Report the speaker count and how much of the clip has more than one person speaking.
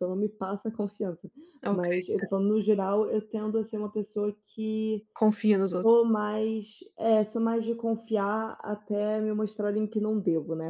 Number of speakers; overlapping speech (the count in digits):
2, about 6%